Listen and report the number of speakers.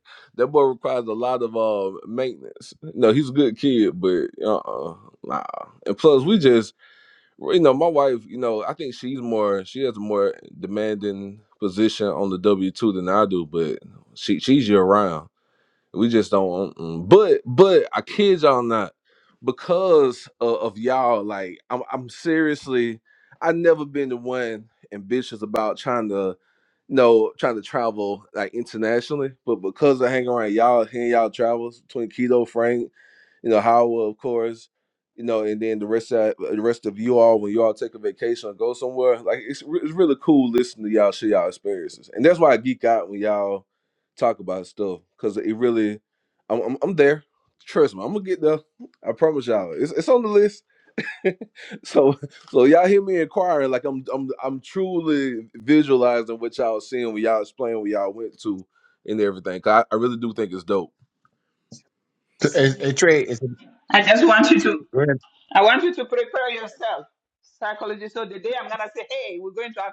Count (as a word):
three